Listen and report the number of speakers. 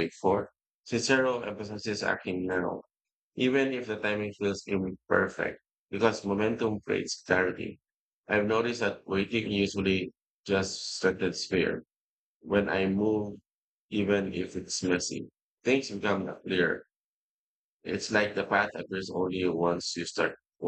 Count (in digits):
1